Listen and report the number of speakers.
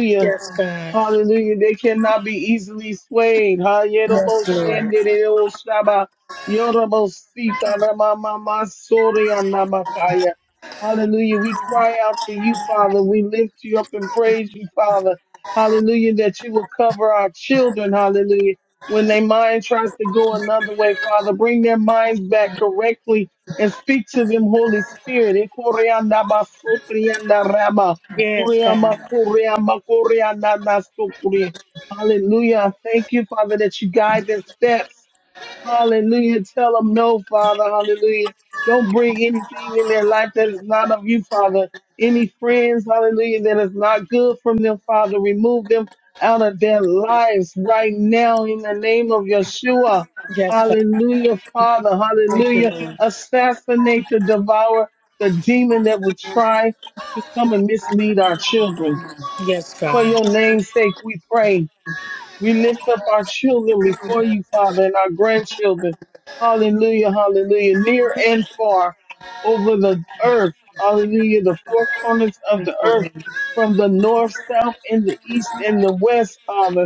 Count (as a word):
two